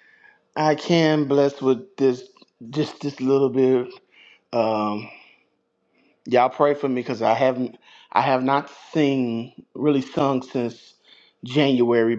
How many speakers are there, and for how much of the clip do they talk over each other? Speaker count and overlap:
one, no overlap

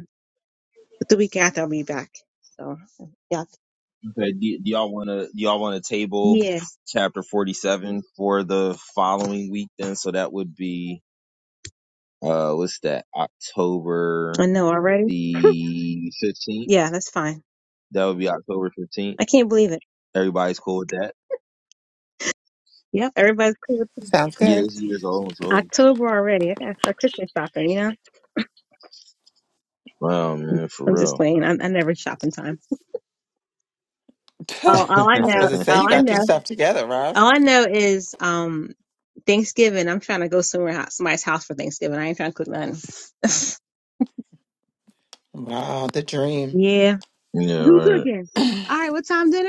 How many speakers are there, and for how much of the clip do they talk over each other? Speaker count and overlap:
three, about 6%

